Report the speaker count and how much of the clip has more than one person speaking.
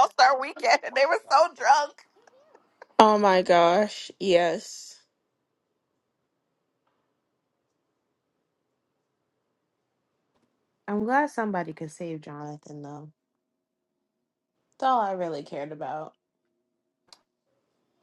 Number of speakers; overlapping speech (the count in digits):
3, no overlap